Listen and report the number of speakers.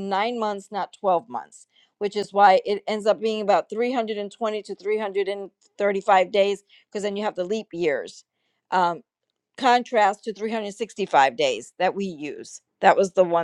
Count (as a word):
one